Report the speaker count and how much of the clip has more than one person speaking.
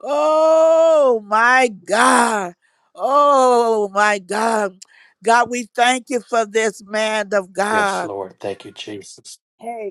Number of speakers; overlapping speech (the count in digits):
2, about 4%